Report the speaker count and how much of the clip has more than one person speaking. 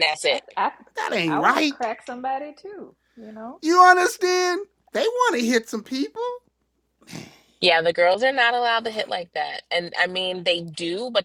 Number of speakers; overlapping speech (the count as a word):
three, about 6%